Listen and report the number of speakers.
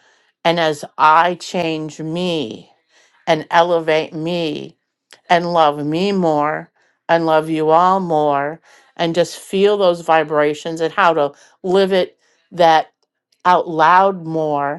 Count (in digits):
1